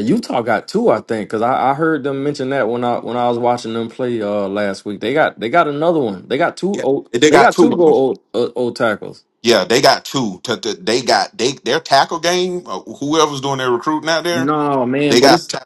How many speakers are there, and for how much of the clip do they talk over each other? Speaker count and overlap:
2, about 11%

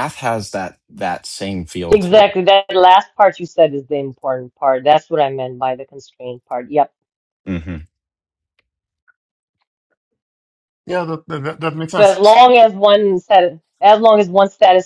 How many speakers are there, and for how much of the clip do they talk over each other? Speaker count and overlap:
3, about 4%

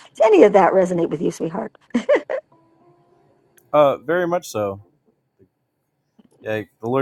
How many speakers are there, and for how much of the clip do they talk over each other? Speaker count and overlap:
2, no overlap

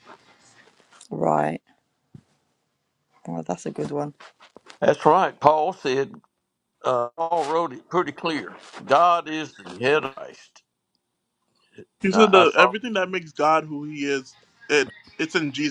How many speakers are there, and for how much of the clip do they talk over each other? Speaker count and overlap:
3, about 4%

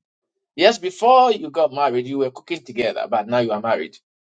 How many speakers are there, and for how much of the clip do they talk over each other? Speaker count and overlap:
1, no overlap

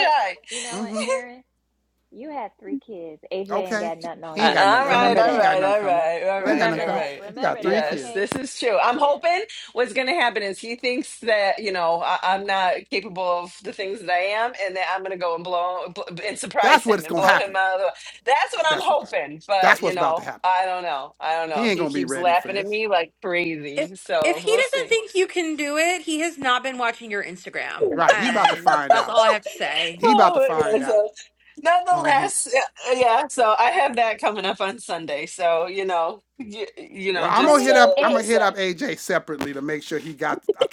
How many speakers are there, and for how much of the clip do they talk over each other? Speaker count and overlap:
4, about 33%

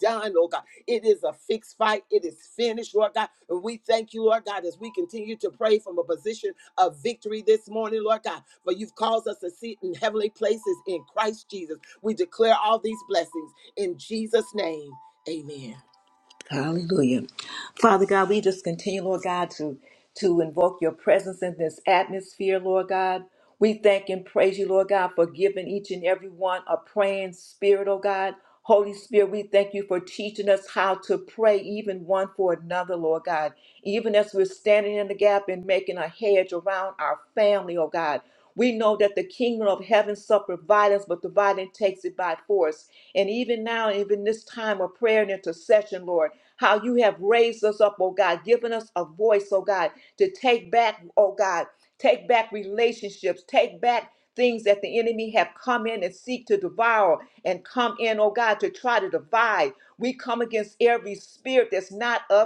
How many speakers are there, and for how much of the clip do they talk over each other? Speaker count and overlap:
2, no overlap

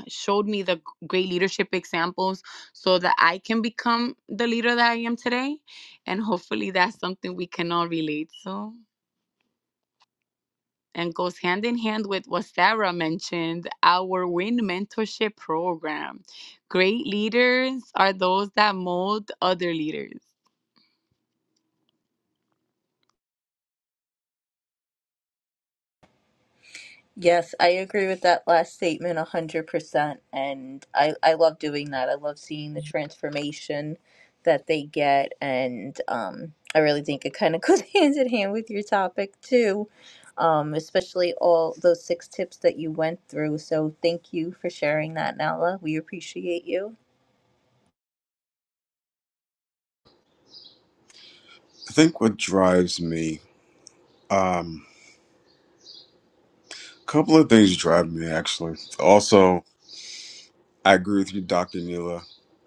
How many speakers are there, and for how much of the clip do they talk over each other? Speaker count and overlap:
3, no overlap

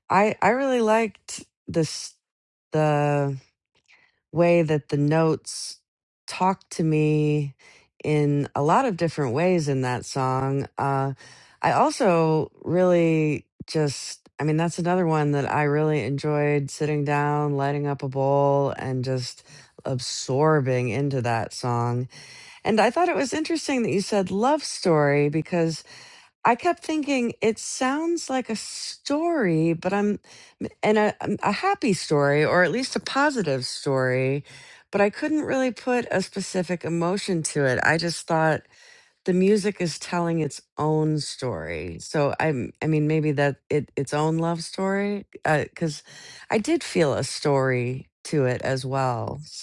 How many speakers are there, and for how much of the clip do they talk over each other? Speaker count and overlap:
1, no overlap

